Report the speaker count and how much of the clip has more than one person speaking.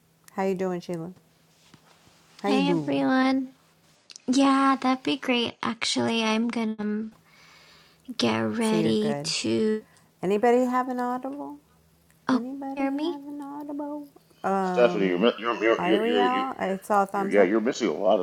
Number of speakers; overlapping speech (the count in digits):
3, about 19%